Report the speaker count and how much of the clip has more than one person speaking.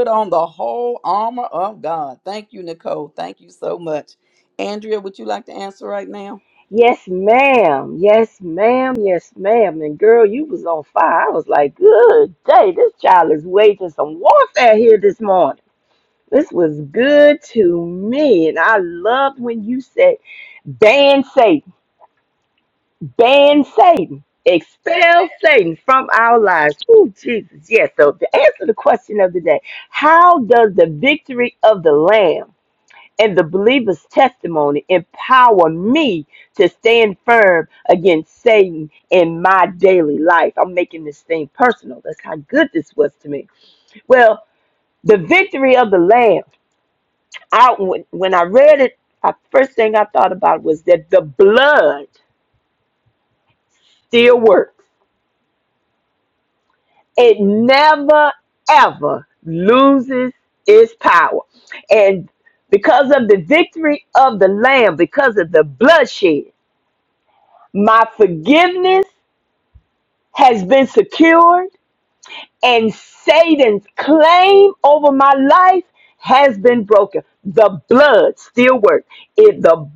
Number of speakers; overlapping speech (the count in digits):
2, no overlap